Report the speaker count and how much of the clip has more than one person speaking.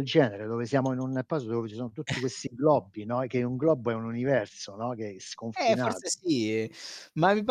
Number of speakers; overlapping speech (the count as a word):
two, about 8%